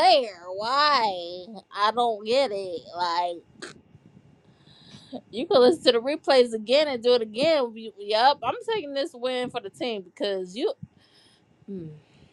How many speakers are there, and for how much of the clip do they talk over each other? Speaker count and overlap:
1, no overlap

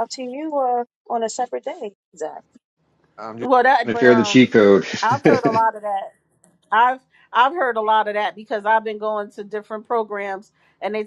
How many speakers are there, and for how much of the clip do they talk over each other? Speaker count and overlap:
3, about 6%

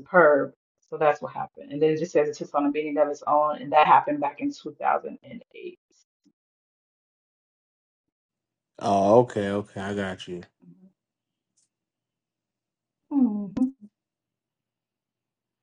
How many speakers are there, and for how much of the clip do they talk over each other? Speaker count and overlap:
2, no overlap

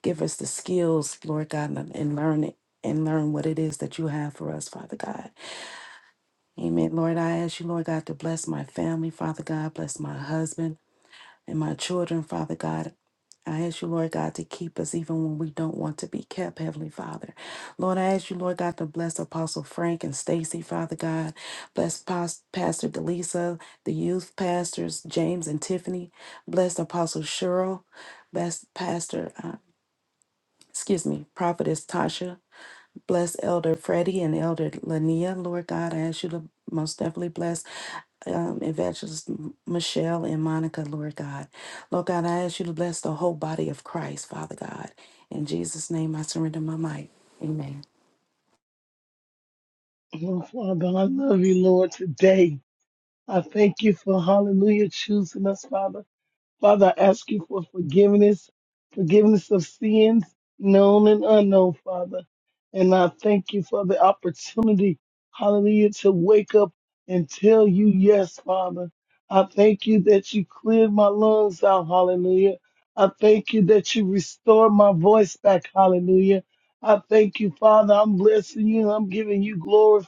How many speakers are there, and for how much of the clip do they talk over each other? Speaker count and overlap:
2, no overlap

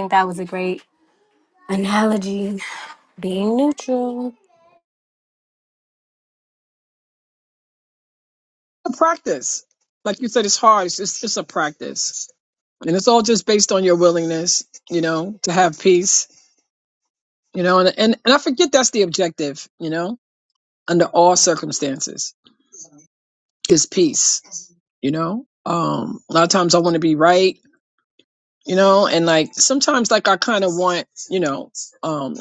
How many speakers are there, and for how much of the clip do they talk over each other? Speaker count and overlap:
2, no overlap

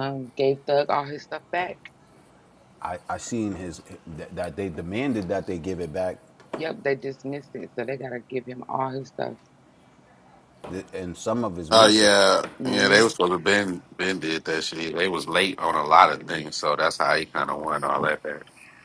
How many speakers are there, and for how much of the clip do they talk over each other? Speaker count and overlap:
3, about 5%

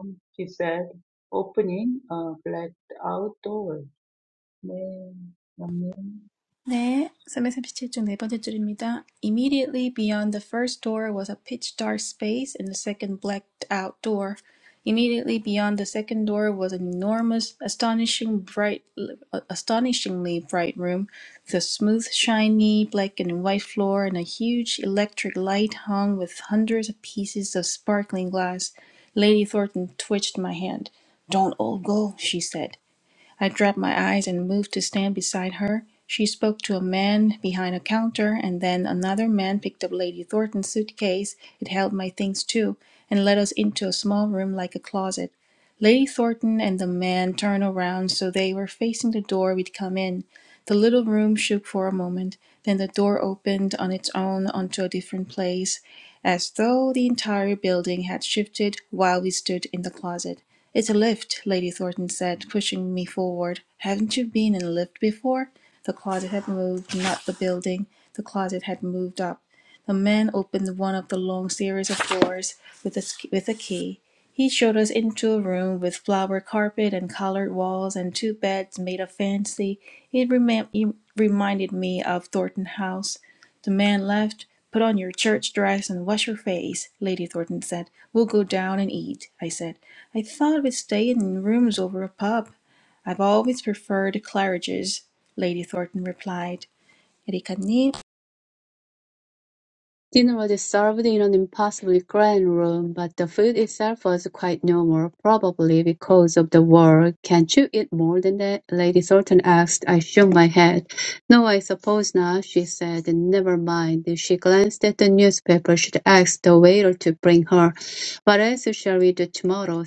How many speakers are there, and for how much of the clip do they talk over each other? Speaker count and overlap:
3, no overlap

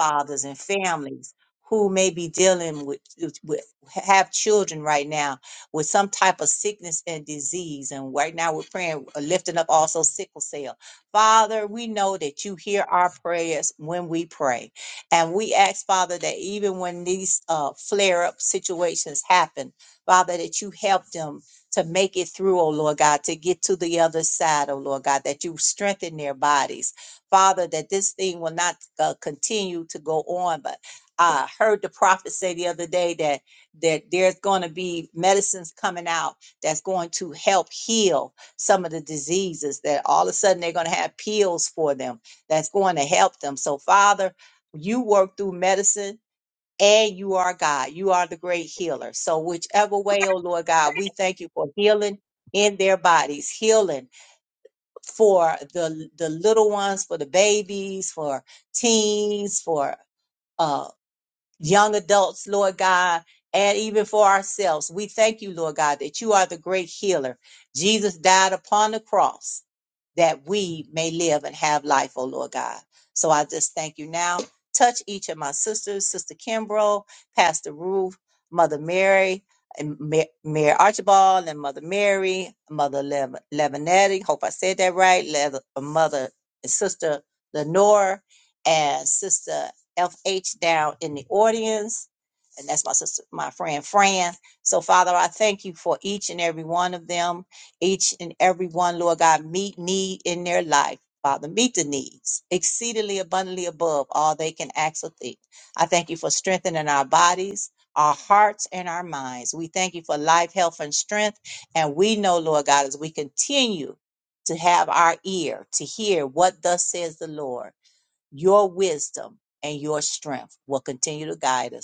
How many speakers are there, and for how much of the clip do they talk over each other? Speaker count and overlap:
1, no overlap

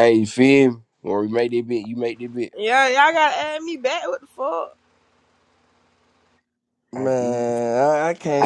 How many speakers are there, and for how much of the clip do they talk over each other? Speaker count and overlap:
3, about 7%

